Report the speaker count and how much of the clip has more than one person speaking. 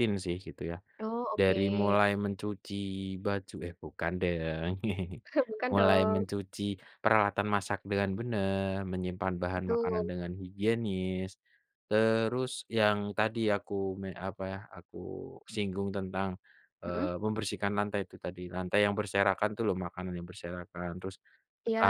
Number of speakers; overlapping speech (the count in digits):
2, about 9%